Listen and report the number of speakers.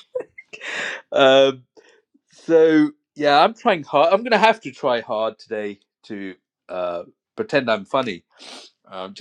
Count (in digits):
1